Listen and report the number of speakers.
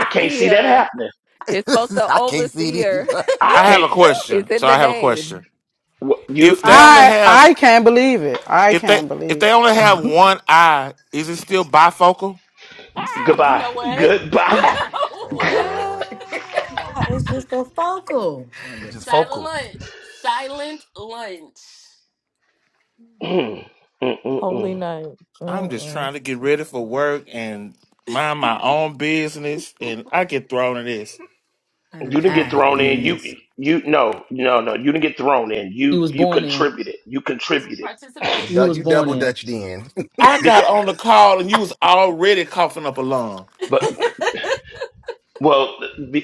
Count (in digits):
7